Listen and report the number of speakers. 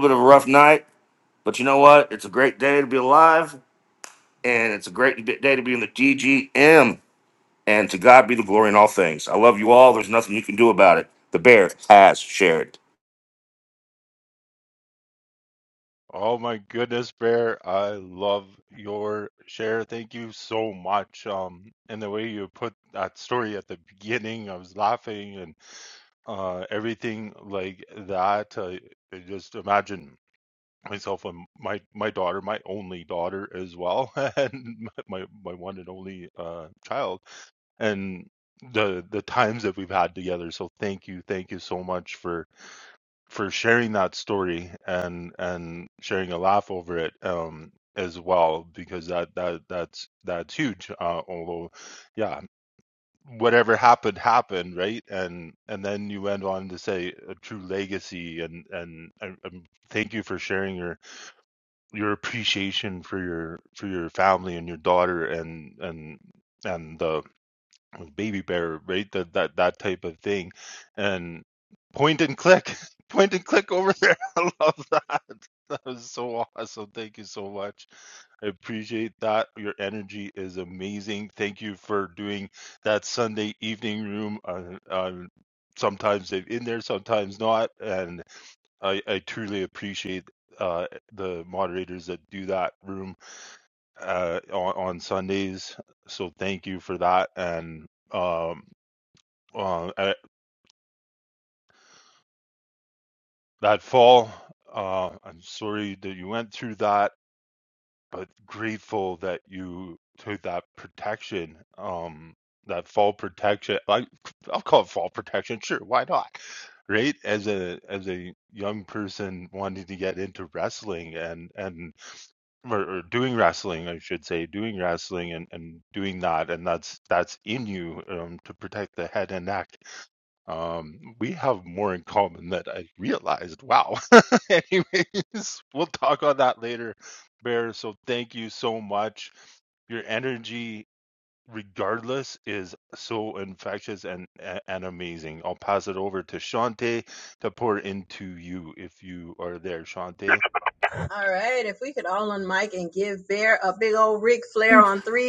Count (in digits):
3